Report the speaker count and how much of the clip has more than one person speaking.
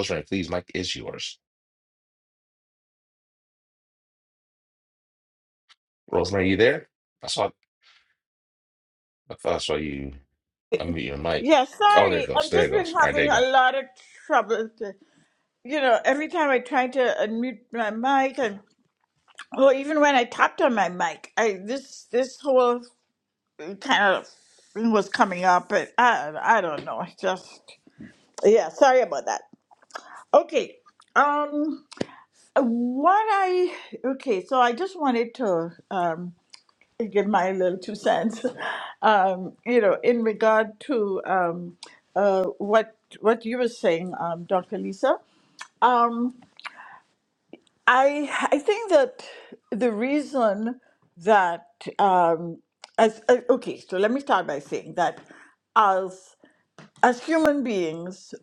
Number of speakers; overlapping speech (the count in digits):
2, about 3%